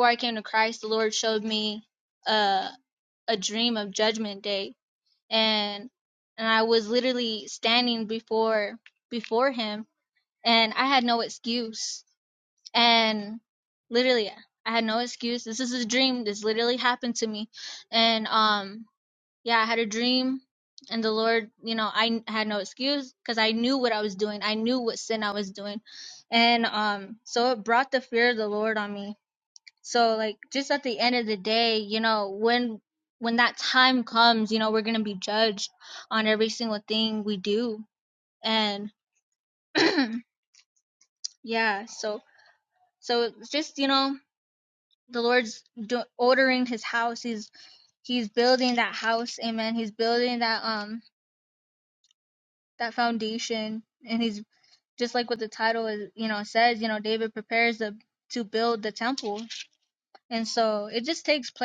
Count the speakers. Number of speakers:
1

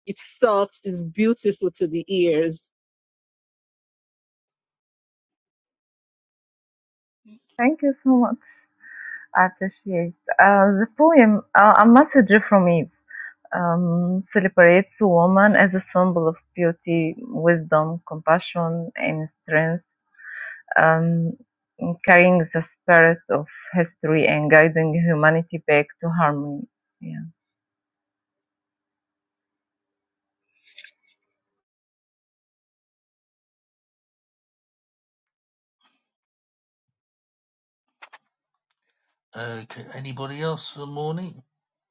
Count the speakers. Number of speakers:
3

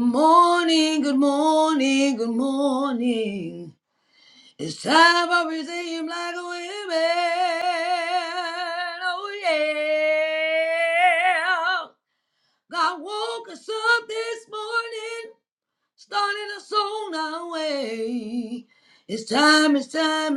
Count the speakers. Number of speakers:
1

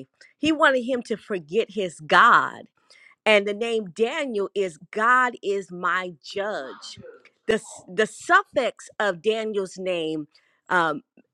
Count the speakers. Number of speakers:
1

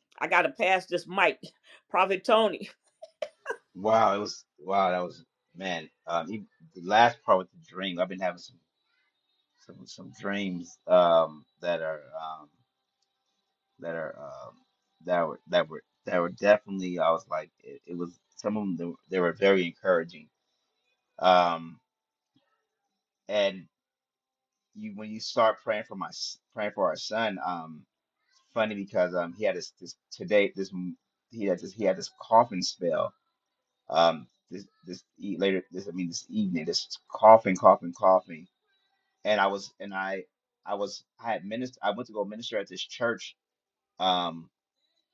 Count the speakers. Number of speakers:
2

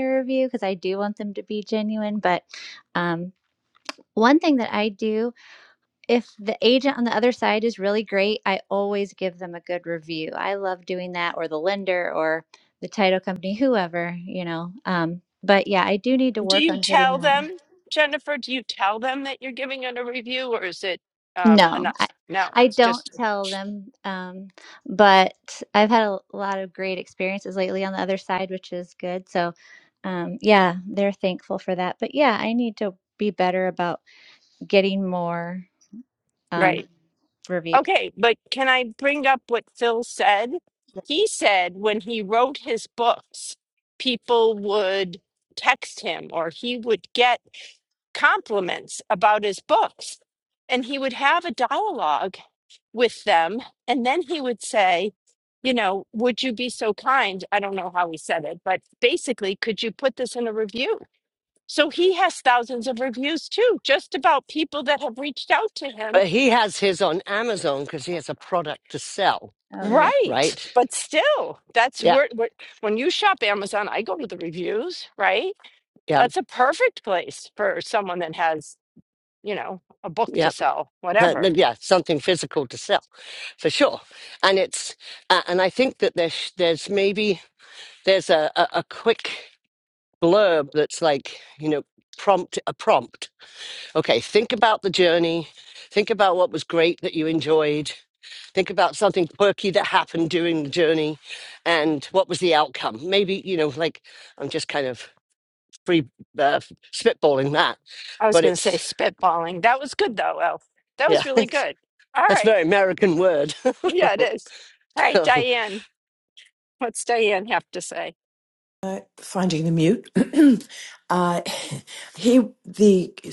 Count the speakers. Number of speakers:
4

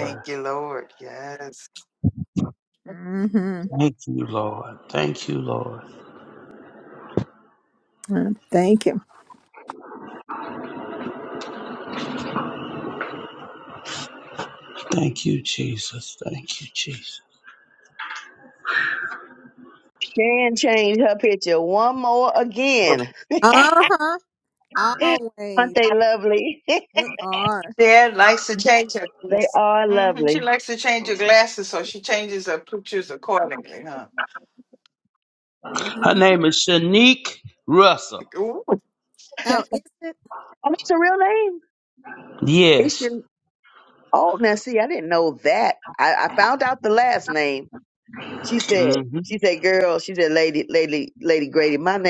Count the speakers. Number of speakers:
4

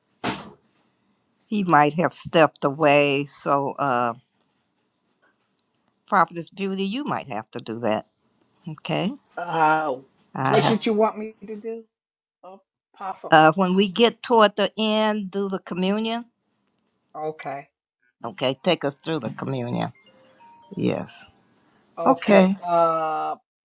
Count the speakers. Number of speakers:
2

